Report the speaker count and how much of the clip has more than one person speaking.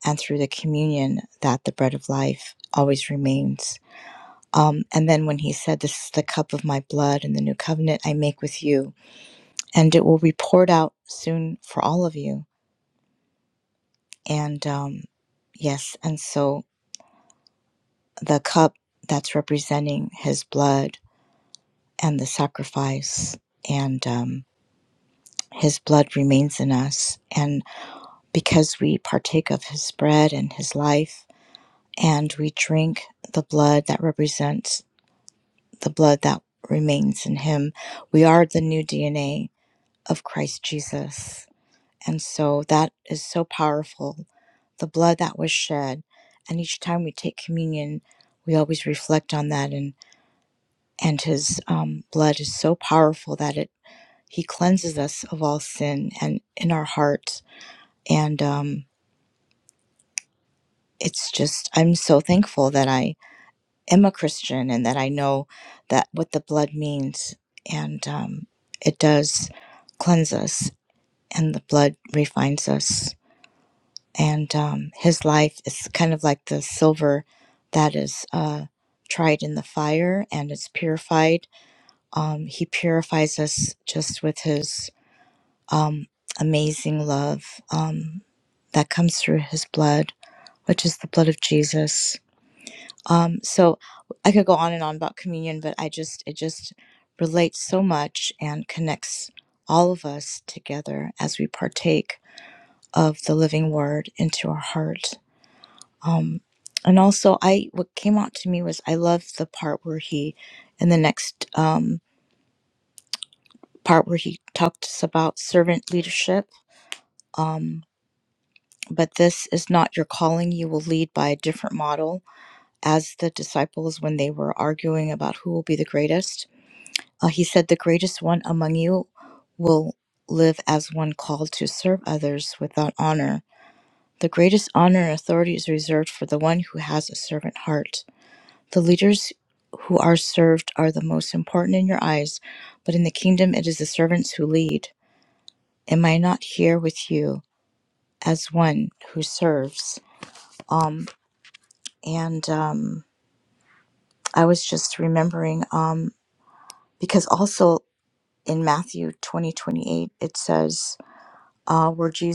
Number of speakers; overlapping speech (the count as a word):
one, no overlap